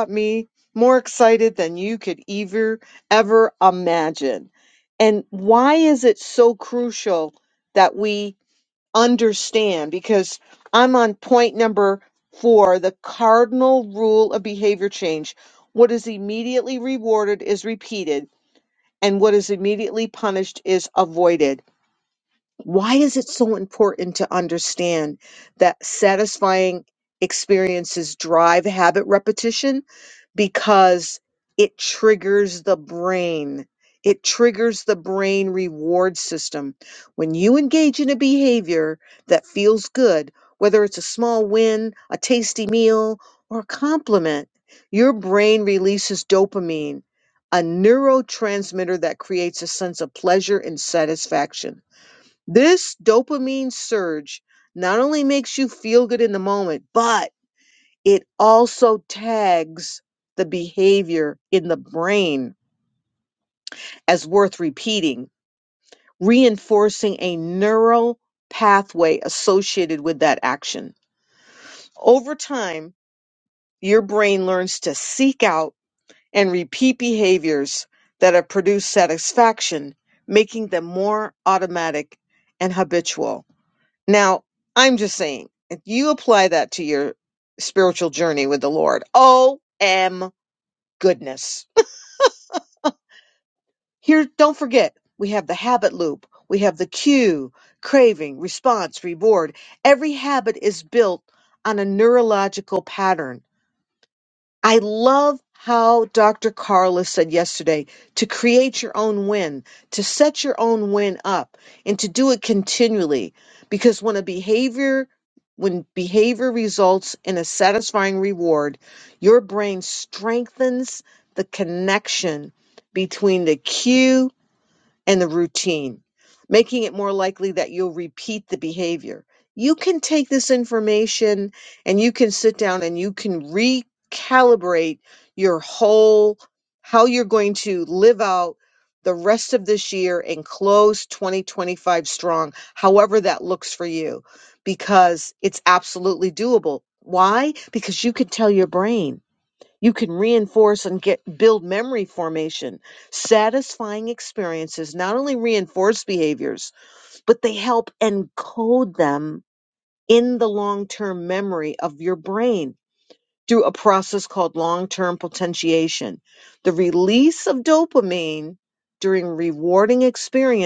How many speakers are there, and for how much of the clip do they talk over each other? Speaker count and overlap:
one, no overlap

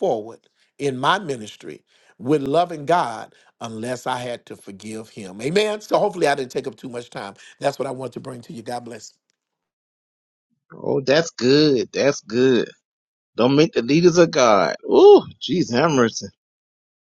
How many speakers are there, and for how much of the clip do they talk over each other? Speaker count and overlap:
two, no overlap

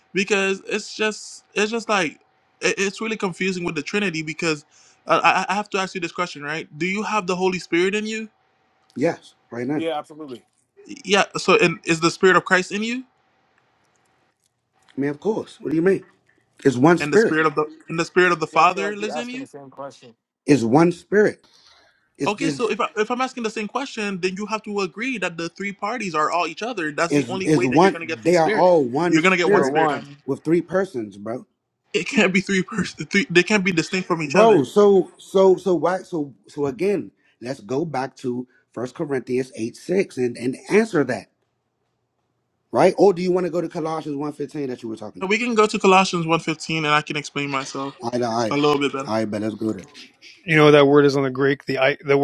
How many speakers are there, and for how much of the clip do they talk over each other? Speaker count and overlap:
four, about 9%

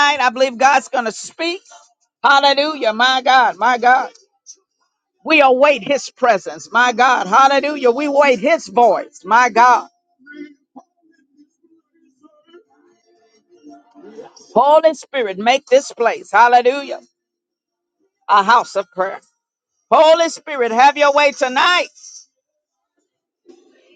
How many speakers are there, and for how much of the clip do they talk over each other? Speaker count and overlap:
one, no overlap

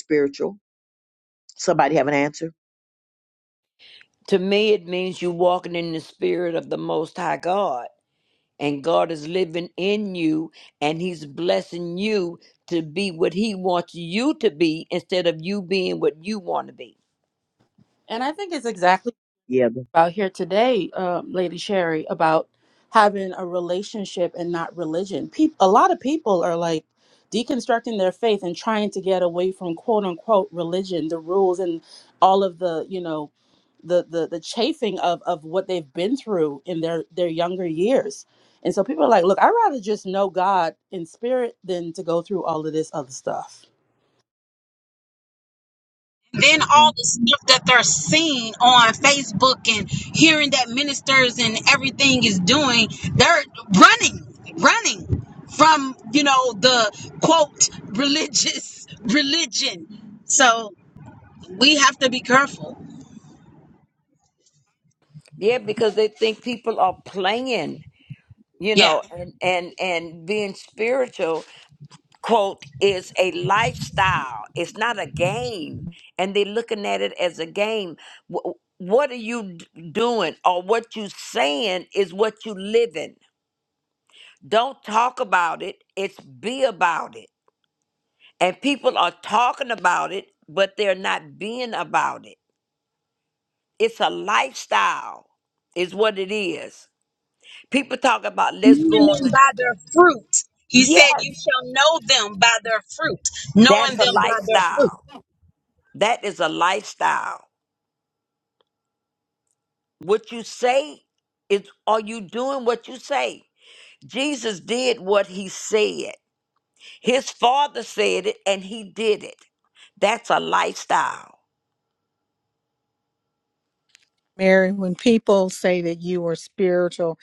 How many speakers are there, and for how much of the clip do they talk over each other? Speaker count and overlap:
five, about 2%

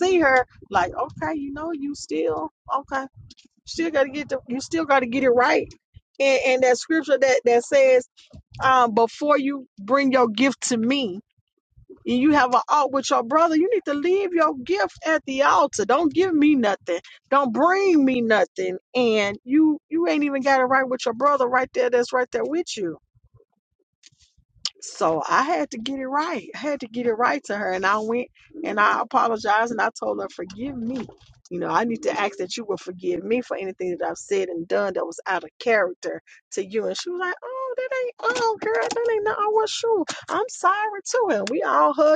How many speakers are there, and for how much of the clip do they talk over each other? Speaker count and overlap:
one, no overlap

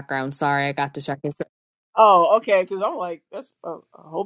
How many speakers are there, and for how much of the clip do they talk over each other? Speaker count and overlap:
two, no overlap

